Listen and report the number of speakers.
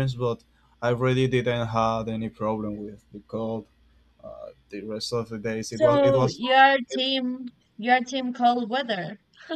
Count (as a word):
two